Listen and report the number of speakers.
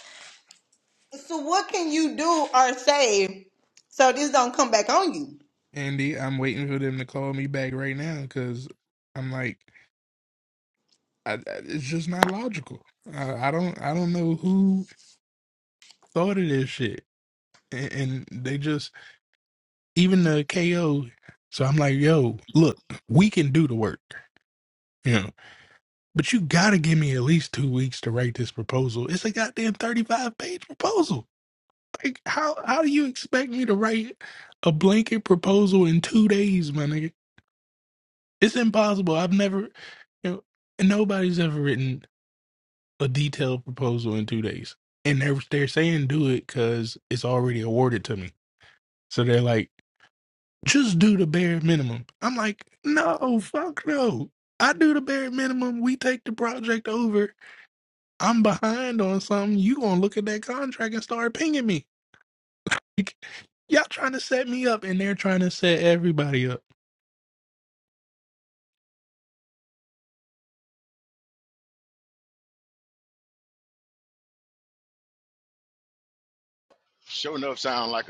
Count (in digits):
3